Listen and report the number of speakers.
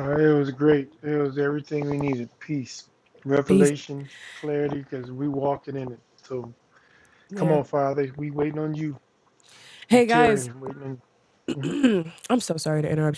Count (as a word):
two